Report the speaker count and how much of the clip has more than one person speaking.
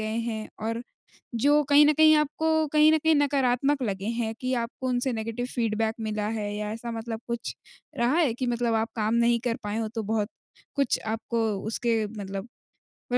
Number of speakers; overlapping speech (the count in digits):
1, no overlap